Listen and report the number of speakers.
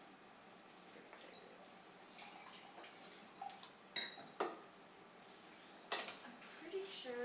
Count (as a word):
one